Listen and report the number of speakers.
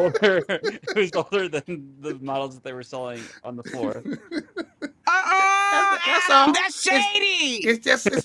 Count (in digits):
3